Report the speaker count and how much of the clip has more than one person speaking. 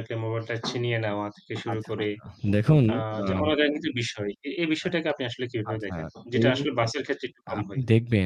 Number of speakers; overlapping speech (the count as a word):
two, about 20%